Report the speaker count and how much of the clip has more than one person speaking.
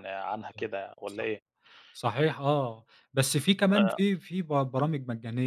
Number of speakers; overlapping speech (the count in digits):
2, about 7%